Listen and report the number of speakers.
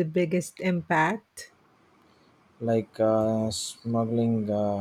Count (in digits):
2